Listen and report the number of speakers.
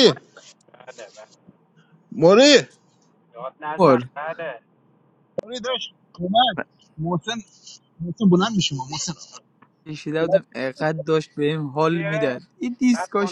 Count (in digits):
3